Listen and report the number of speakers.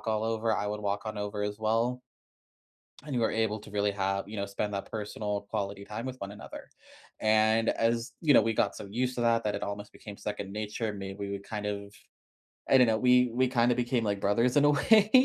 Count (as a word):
one